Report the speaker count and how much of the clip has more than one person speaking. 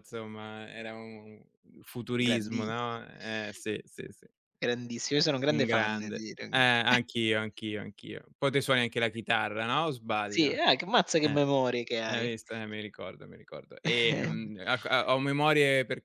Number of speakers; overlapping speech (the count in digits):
2, about 12%